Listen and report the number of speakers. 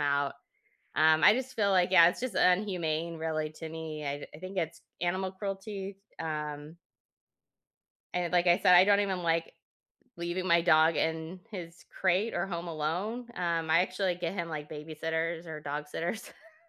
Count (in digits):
1